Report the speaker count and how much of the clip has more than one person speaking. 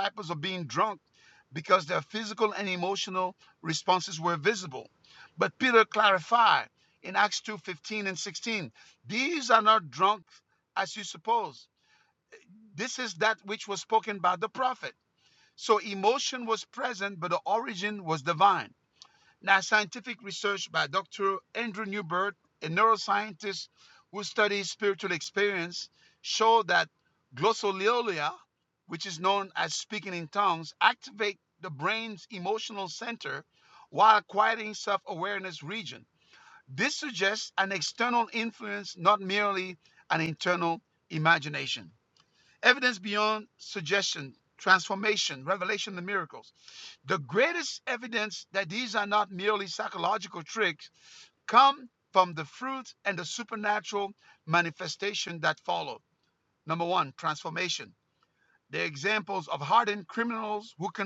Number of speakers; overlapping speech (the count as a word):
one, no overlap